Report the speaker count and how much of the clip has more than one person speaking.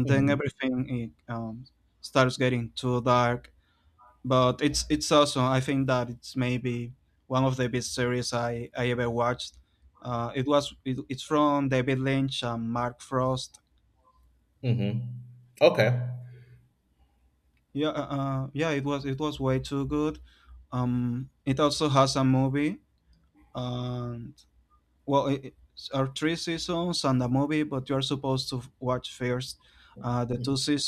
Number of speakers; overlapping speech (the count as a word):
two, about 1%